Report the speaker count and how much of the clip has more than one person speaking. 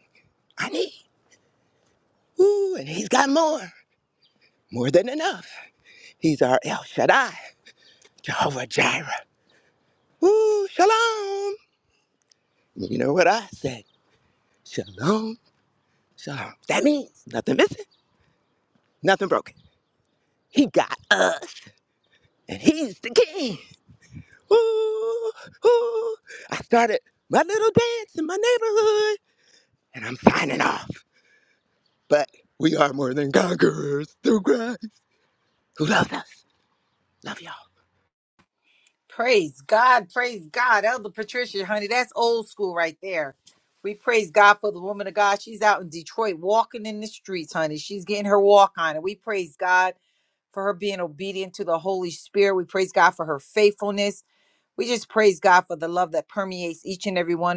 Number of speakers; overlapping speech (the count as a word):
two, no overlap